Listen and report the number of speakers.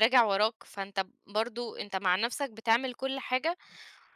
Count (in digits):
1